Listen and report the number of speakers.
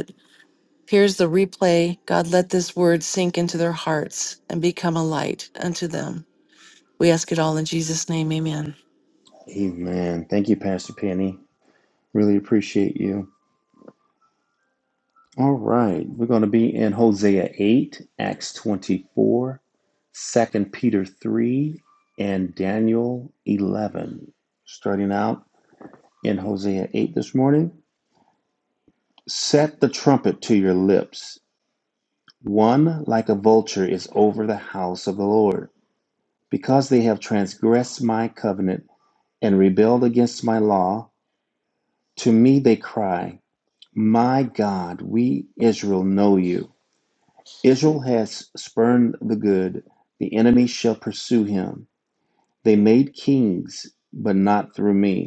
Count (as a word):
two